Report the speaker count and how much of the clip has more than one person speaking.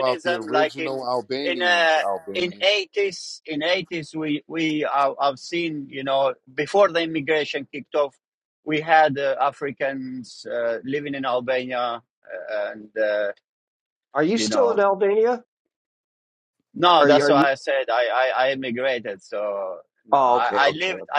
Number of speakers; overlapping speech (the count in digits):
3, about 19%